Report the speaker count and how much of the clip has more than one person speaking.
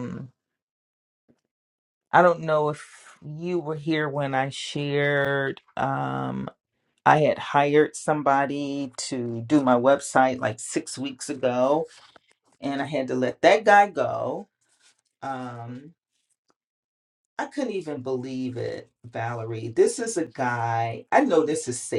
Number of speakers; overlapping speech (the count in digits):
1, no overlap